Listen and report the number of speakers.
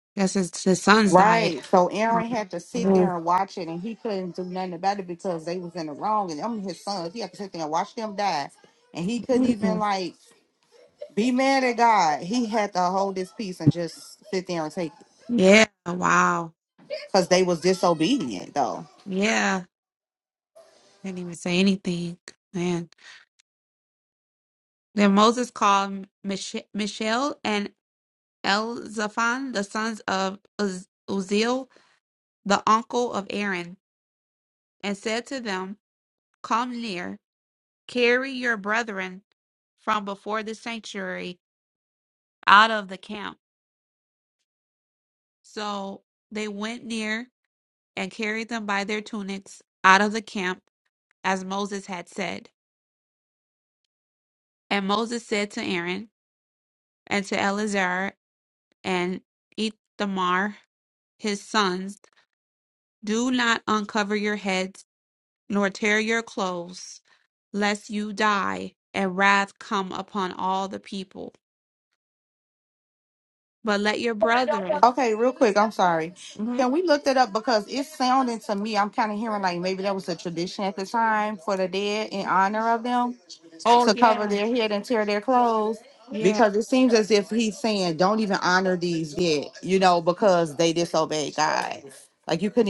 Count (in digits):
2